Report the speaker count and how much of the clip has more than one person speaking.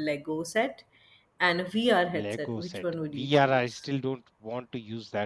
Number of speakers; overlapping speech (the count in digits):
2, about 27%